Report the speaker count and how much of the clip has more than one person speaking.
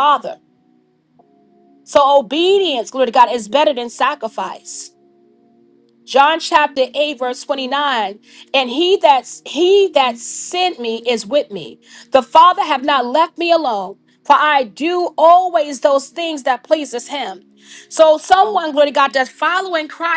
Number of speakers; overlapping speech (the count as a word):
one, no overlap